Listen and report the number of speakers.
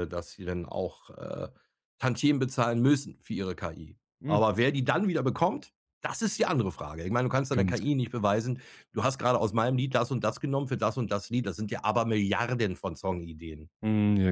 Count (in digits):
2